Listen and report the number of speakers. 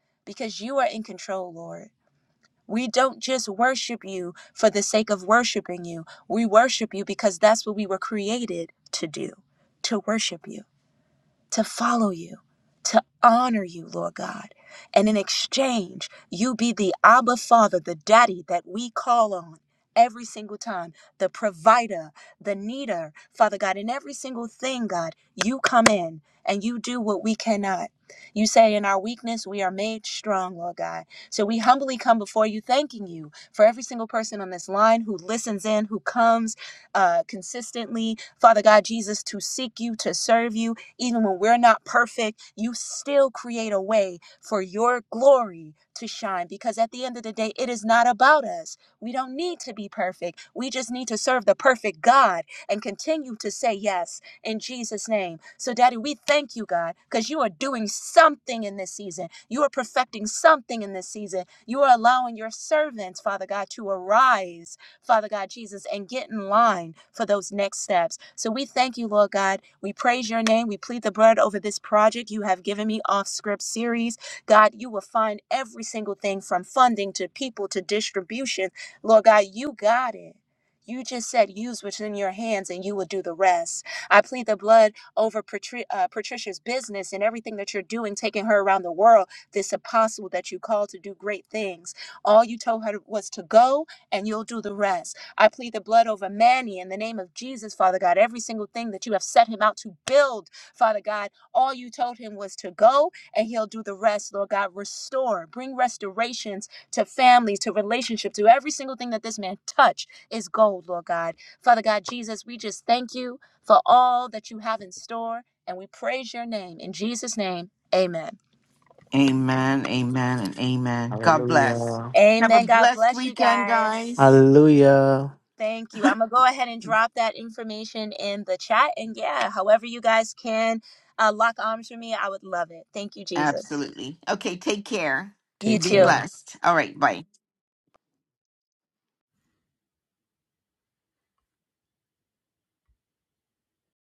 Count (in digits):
3